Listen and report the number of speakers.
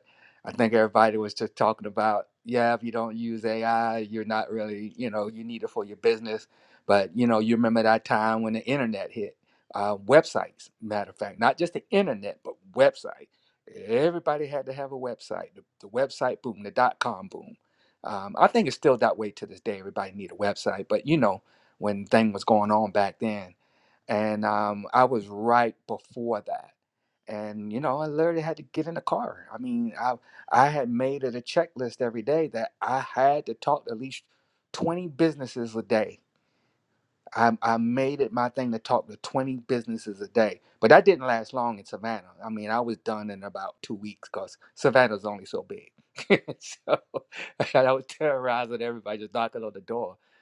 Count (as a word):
one